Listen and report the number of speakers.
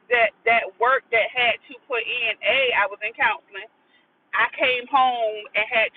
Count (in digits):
1